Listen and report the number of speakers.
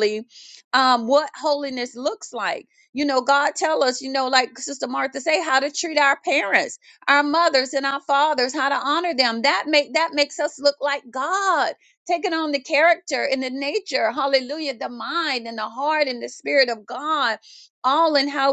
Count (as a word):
one